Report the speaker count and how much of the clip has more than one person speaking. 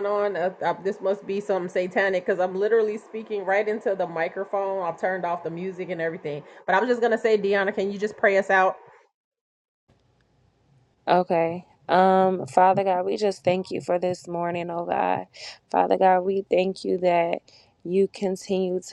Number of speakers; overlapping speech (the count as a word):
two, no overlap